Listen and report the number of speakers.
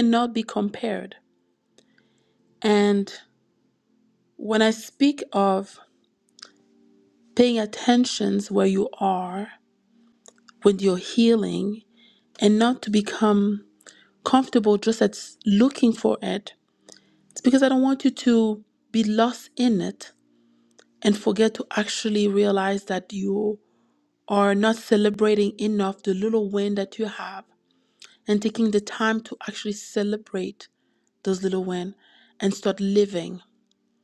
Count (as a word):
one